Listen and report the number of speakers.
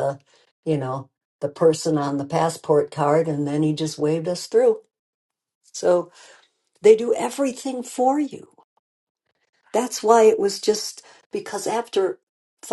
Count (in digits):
1